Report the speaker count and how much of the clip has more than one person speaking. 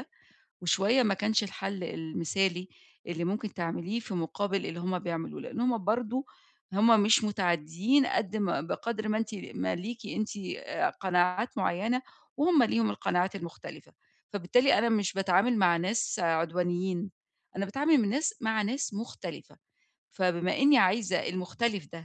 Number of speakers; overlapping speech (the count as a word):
one, no overlap